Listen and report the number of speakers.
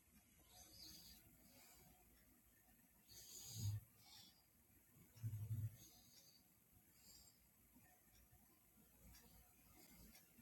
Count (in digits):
0